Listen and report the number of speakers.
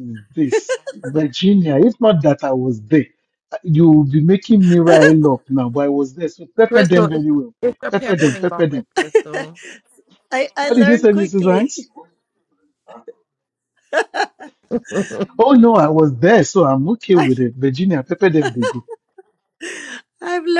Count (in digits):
3